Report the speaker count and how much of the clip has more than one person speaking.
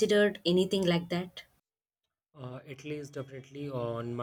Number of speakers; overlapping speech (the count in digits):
2, no overlap